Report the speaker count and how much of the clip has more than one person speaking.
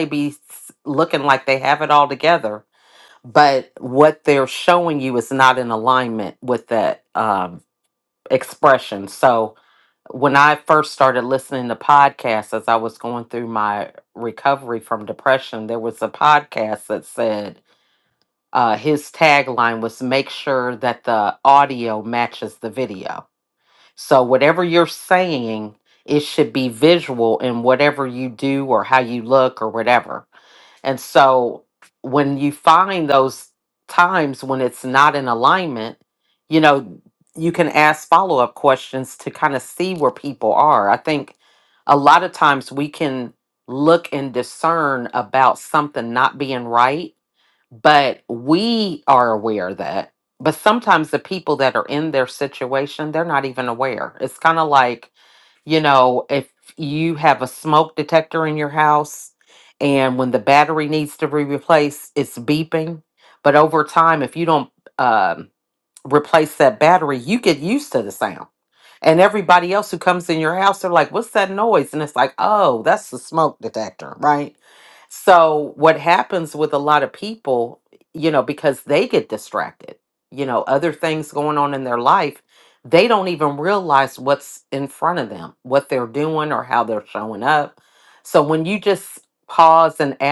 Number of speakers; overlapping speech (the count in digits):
1, no overlap